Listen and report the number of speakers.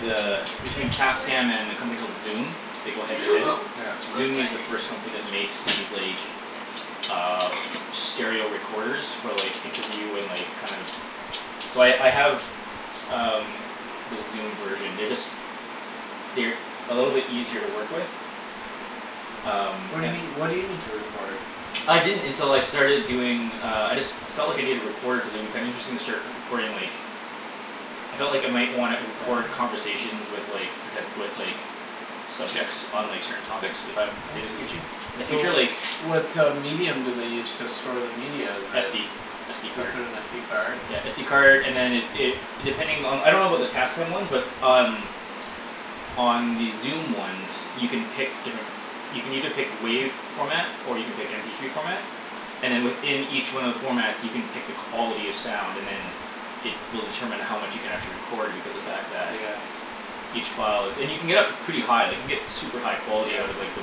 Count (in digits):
2